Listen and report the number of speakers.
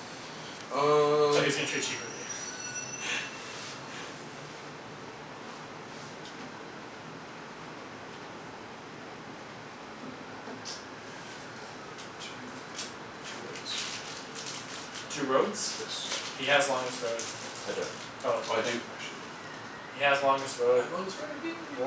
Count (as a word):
two